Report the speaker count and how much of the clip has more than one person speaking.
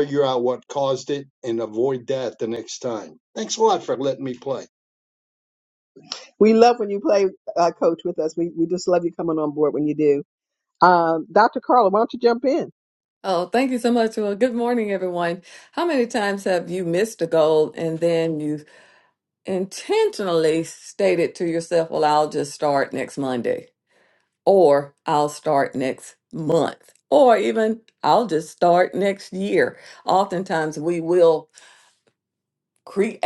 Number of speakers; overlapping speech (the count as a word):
three, no overlap